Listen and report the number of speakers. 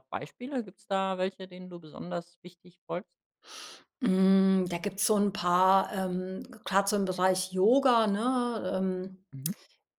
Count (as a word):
two